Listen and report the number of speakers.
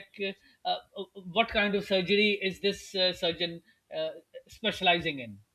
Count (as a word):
one